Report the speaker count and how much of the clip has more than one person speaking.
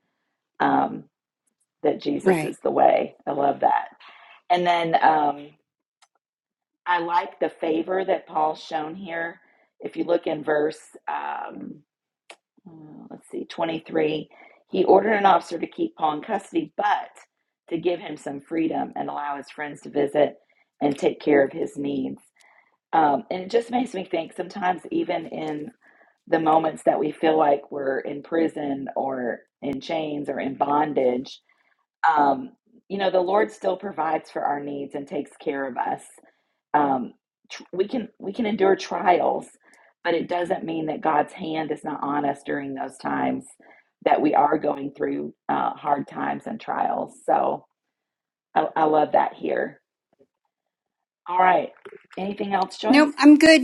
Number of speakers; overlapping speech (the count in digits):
2, about 1%